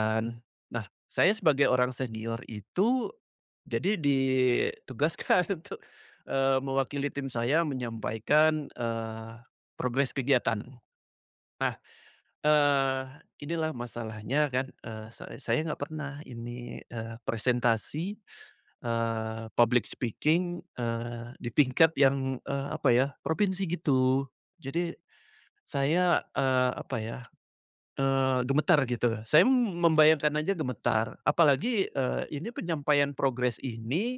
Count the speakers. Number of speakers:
one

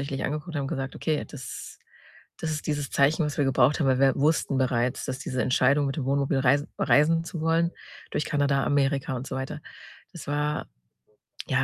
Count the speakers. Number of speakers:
one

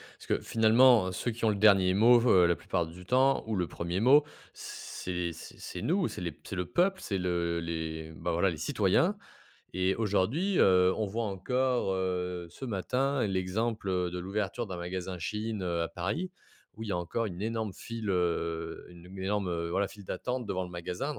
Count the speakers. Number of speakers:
one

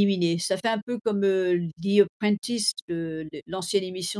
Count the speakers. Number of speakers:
one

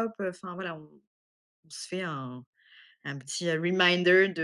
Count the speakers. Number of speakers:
one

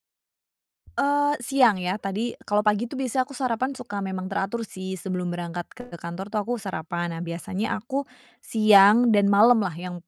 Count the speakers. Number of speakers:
one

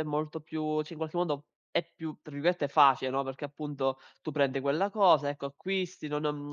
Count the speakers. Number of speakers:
one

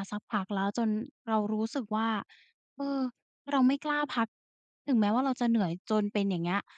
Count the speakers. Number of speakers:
one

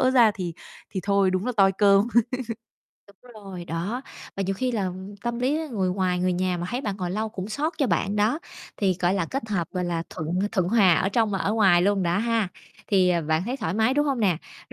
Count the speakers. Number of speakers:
two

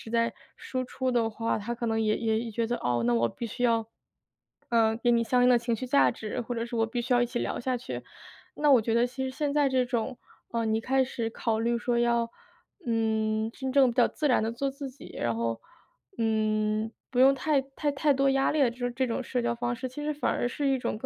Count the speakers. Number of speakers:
one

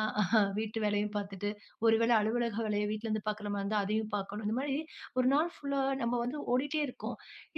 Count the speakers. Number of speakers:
one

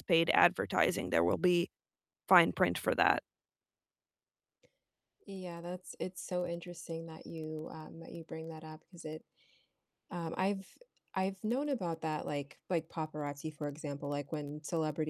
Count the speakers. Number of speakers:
two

